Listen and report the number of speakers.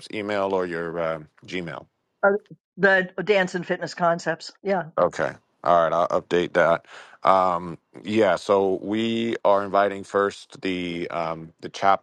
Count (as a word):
two